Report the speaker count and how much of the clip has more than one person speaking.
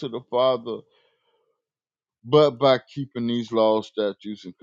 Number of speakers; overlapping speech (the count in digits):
1, no overlap